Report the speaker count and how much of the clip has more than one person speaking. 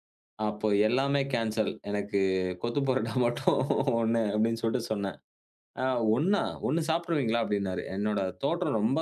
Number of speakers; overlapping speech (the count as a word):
one, no overlap